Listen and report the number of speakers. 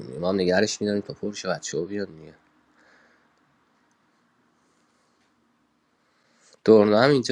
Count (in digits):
1